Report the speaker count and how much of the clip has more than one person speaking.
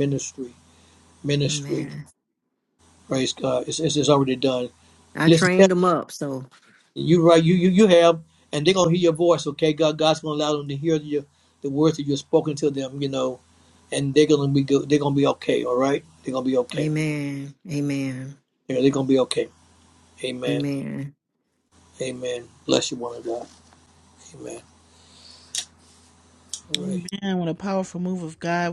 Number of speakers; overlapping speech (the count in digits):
3, about 5%